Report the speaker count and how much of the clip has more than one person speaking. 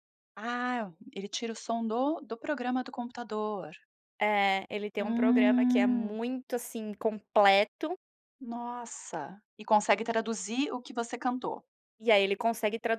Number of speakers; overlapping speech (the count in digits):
2, about 8%